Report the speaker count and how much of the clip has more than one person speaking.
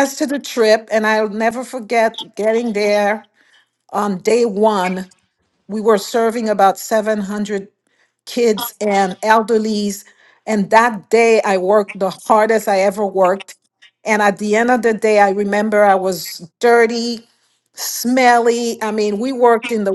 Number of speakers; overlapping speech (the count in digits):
1, no overlap